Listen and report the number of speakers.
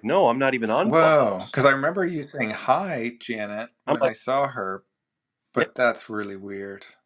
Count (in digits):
2